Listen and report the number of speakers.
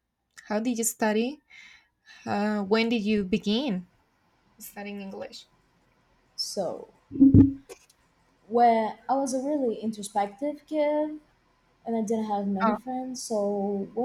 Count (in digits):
2